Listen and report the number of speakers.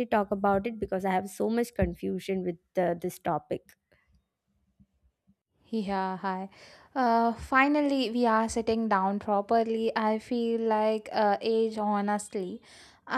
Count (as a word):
two